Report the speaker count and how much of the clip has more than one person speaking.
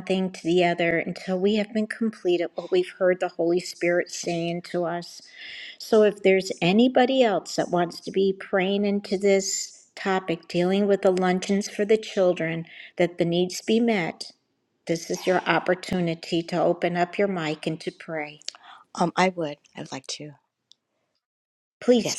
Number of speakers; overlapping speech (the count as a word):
two, about 1%